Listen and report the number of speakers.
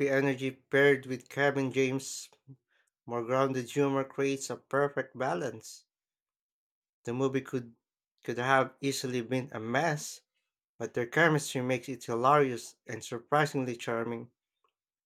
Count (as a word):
one